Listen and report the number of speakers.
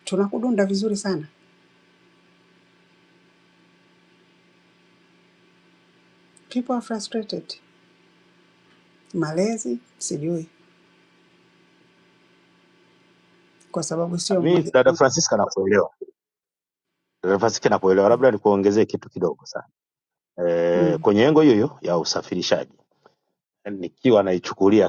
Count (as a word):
two